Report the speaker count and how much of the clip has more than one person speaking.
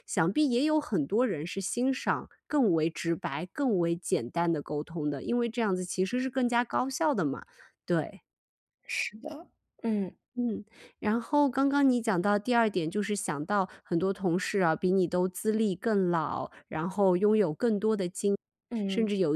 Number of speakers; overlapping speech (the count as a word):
two, about 1%